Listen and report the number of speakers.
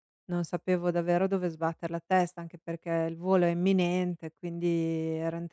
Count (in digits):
1